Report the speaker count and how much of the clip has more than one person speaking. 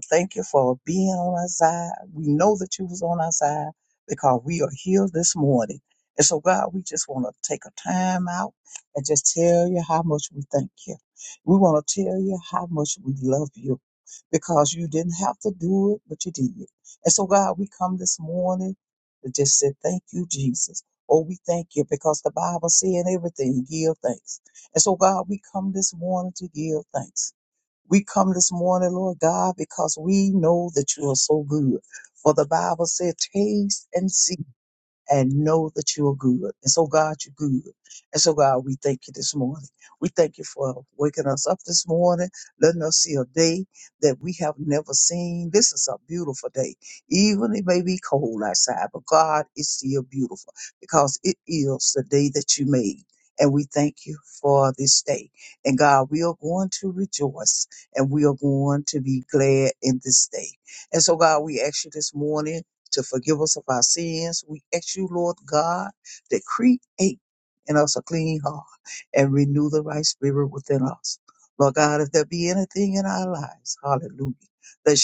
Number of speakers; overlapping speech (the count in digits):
1, no overlap